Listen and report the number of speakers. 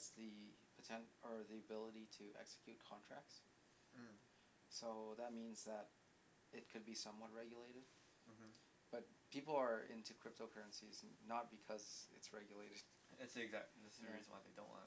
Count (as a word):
two